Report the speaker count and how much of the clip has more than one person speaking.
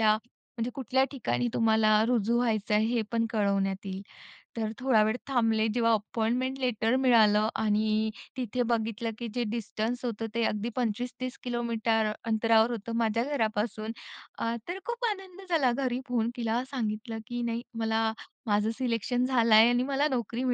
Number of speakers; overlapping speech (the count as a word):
one, no overlap